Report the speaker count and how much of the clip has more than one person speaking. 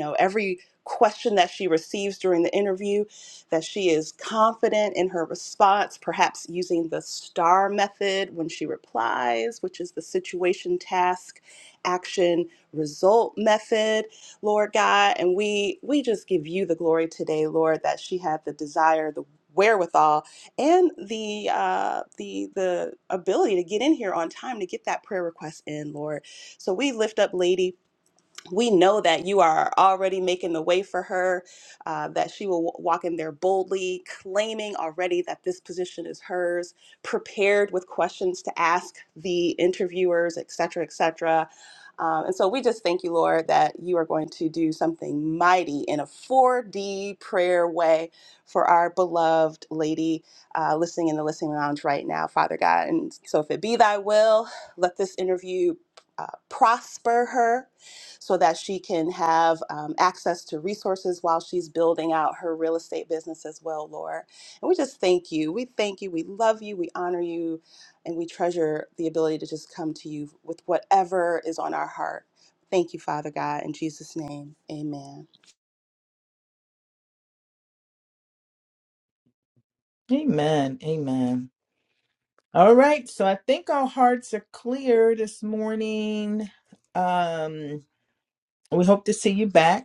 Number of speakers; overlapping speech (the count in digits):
2, no overlap